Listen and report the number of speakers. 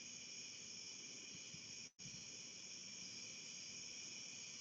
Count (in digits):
0